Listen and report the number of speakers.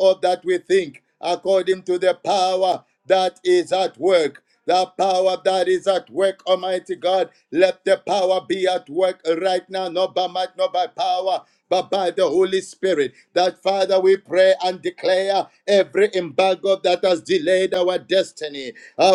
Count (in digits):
1